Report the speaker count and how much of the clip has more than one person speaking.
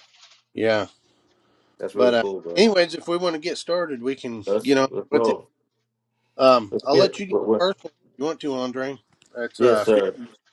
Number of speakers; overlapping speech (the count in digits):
2, about 26%